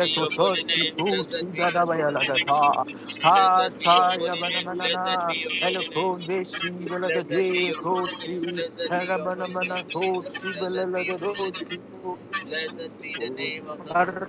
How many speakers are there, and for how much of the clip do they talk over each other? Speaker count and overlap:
2, about 70%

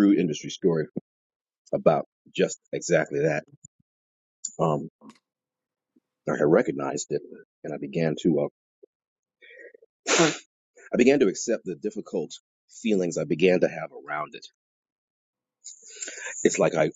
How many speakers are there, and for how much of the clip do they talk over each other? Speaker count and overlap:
1, no overlap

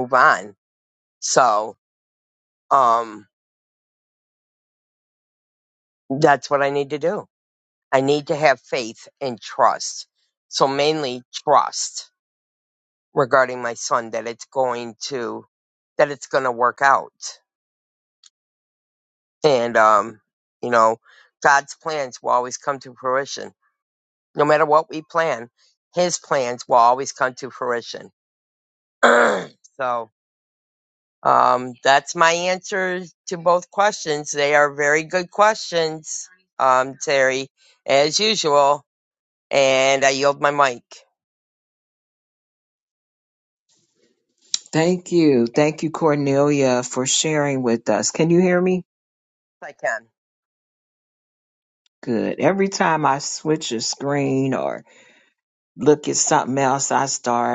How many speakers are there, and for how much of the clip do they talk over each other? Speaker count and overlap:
2, no overlap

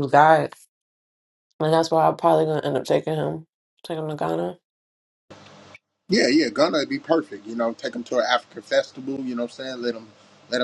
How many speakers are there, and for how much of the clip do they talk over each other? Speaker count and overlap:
2, no overlap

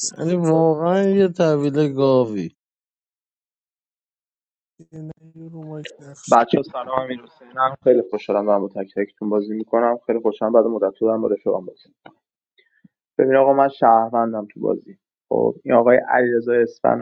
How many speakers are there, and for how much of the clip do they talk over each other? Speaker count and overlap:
3, about 4%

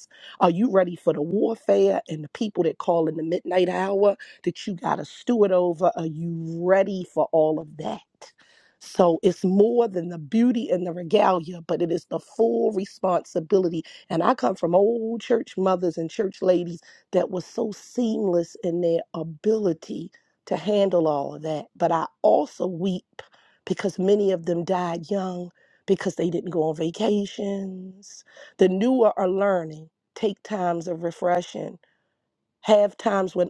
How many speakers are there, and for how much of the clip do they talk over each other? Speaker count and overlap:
1, no overlap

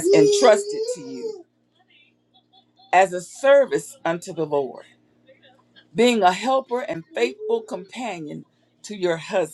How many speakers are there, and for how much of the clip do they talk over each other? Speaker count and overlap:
1, no overlap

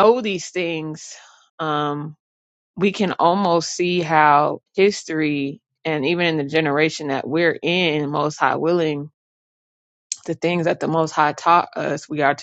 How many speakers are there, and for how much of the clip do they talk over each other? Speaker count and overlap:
1, no overlap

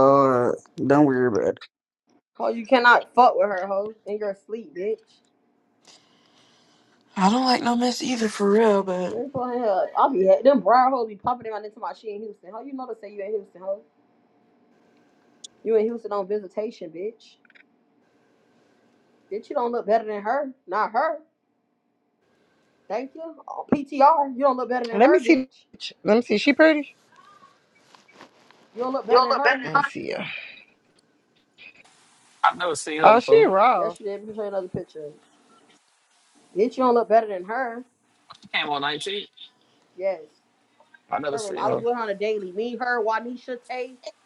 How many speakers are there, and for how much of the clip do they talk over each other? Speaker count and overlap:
5, about 4%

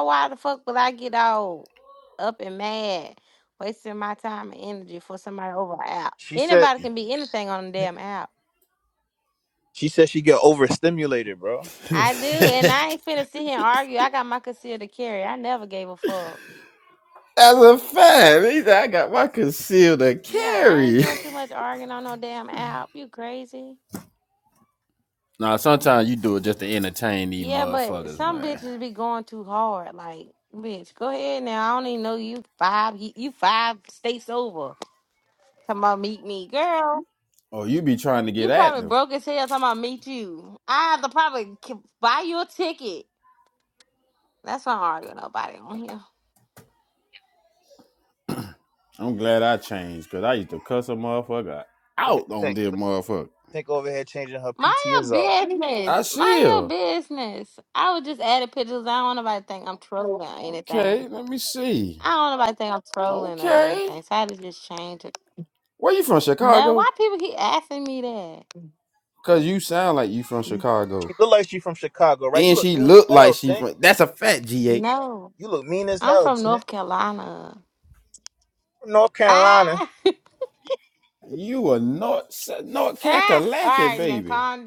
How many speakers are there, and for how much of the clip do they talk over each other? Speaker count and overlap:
3, about 13%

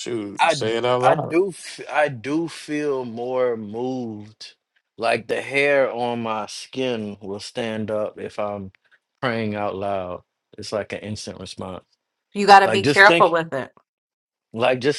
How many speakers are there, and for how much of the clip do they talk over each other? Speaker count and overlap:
3, about 9%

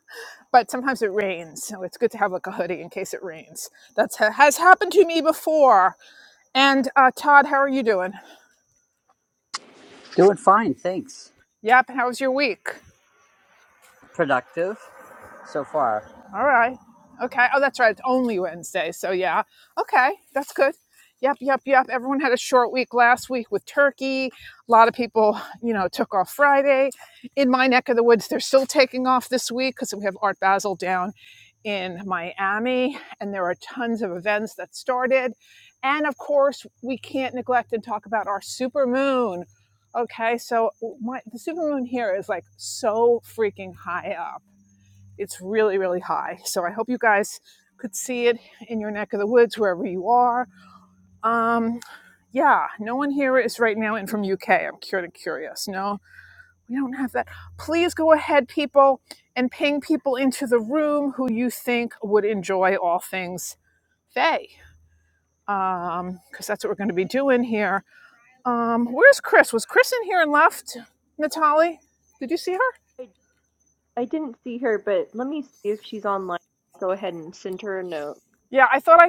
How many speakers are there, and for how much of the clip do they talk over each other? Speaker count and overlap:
3, no overlap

